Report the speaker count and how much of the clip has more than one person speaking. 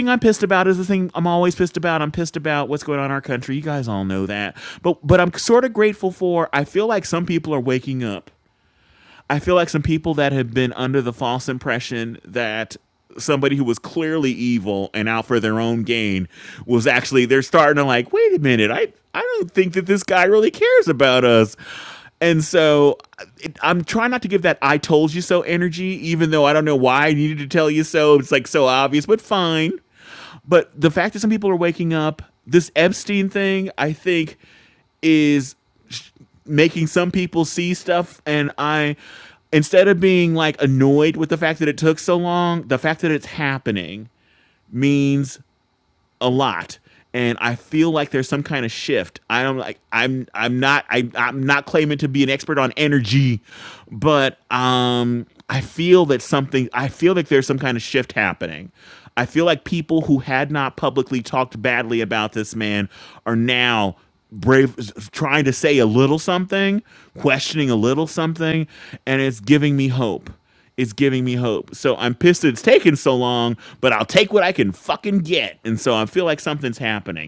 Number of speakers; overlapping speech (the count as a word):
one, no overlap